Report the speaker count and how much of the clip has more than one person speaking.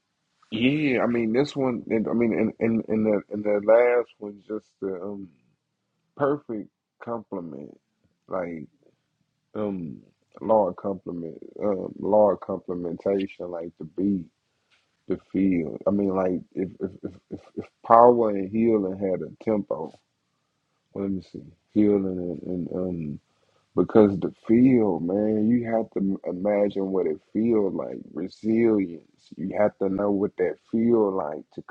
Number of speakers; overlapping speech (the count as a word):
one, no overlap